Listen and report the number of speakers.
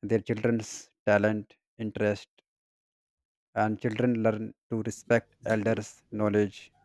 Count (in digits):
1